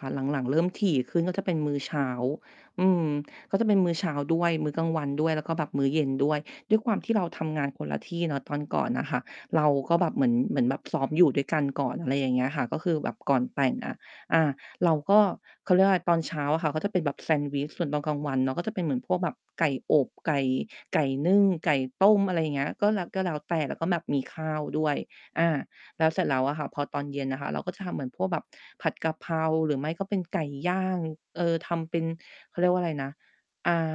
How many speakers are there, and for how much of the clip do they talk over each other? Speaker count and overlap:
1, no overlap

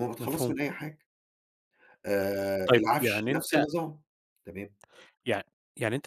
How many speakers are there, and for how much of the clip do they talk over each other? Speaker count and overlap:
2, about 22%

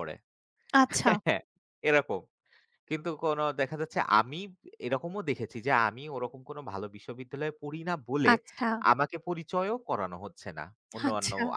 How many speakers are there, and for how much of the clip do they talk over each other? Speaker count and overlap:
2, about 5%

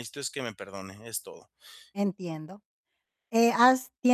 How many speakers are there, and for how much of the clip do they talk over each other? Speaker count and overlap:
2, no overlap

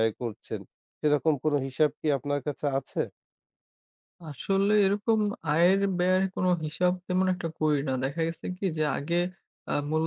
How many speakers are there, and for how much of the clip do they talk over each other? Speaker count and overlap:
2, no overlap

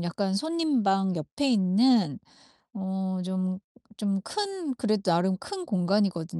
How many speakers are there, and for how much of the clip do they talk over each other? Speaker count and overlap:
1, no overlap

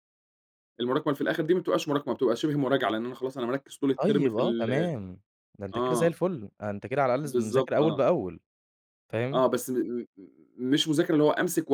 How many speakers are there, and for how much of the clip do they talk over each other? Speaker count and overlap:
2, about 18%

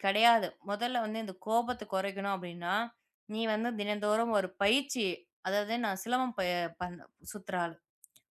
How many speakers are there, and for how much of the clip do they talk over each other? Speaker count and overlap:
1, no overlap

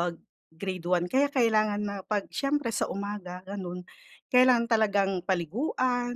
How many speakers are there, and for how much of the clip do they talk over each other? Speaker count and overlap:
1, no overlap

